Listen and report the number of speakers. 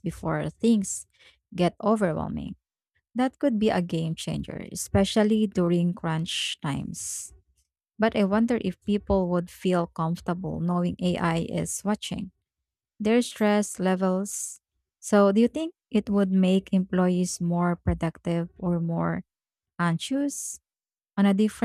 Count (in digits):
1